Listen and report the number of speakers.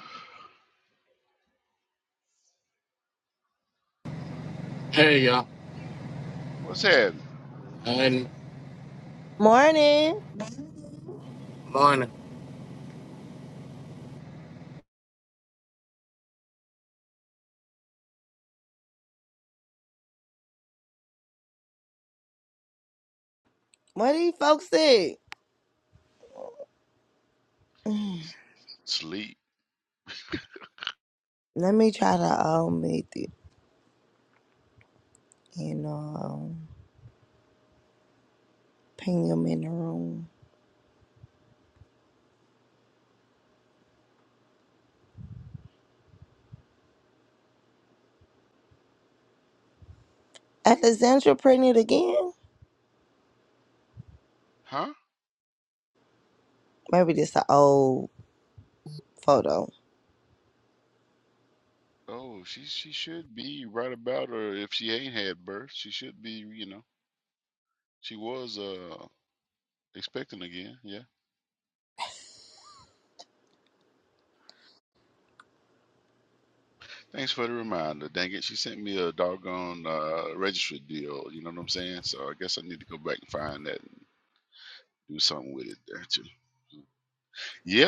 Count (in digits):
3